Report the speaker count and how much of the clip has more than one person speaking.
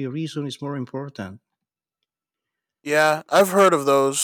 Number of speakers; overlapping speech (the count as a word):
two, no overlap